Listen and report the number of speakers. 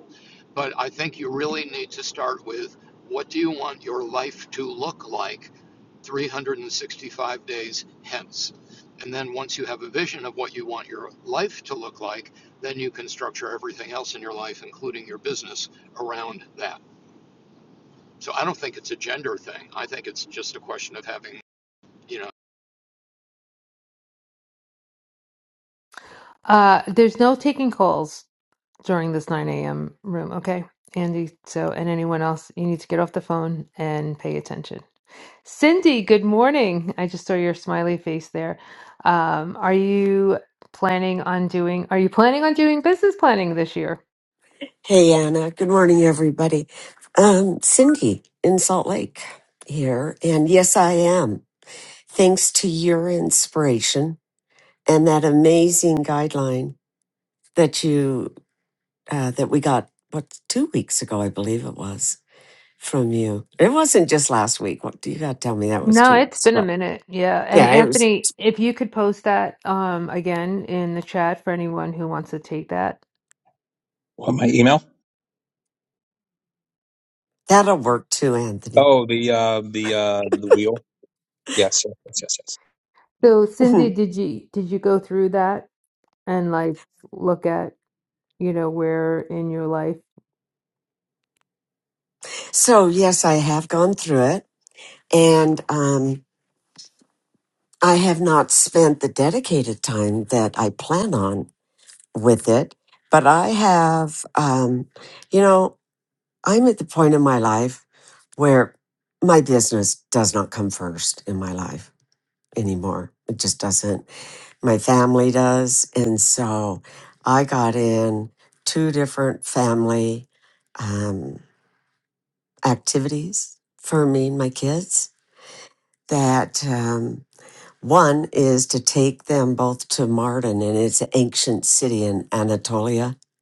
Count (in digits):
4